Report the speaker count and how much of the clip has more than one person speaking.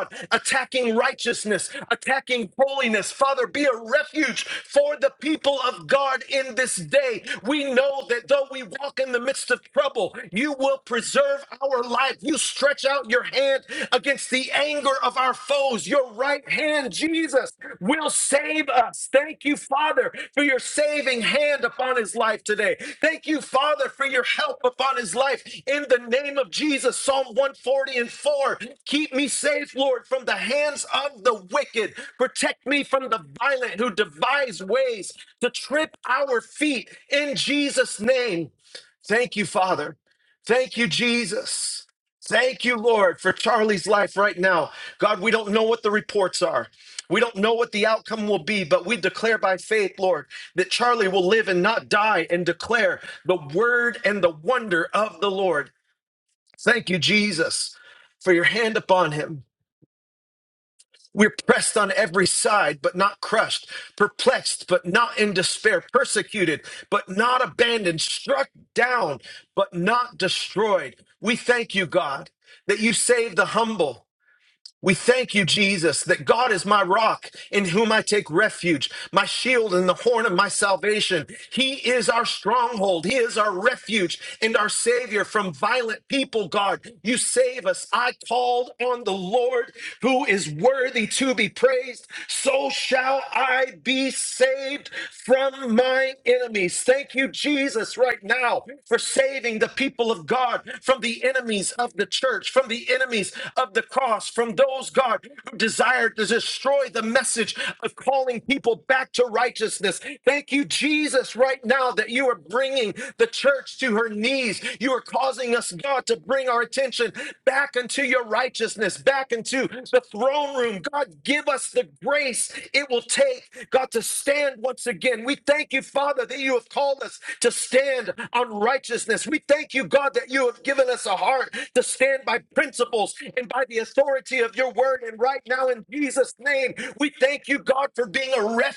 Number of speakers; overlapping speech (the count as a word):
one, no overlap